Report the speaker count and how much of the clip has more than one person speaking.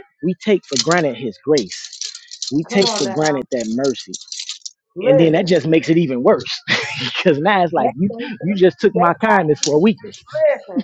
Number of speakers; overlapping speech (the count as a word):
two, about 23%